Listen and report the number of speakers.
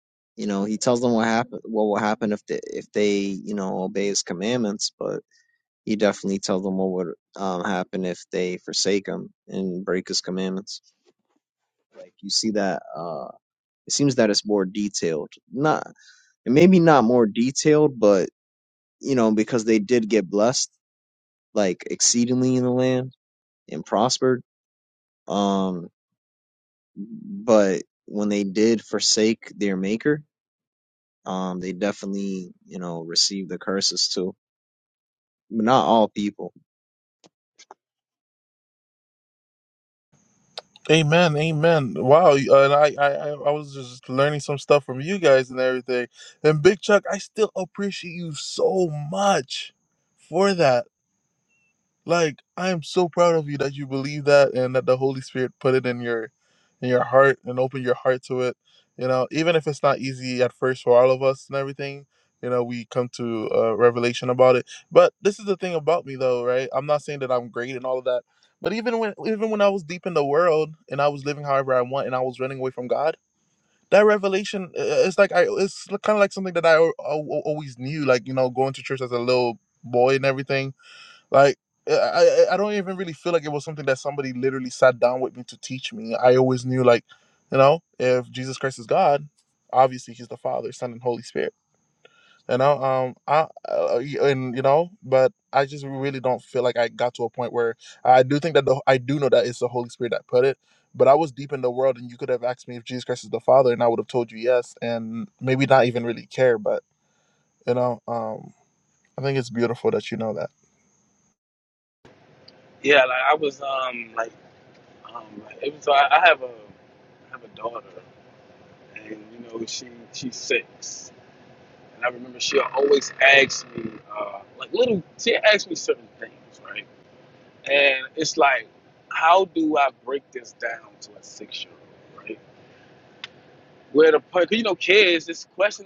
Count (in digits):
3